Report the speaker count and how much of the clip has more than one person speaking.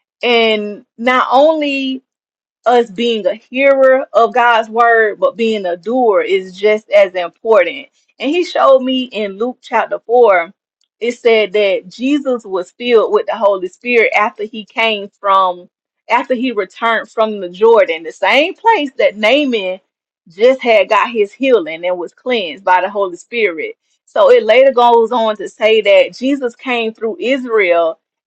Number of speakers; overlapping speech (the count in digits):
1, no overlap